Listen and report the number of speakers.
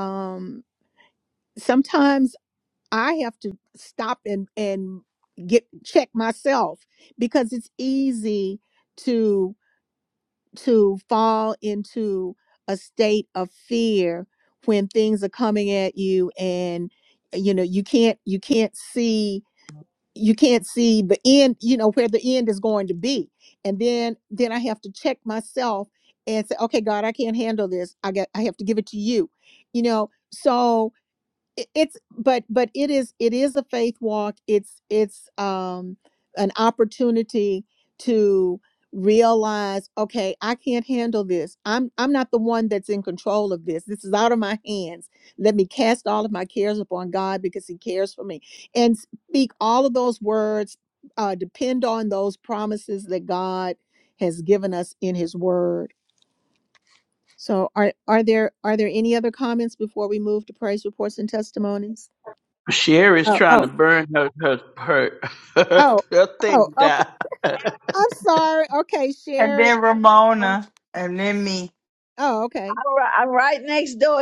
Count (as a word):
four